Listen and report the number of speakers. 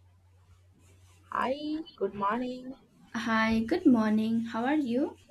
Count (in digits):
2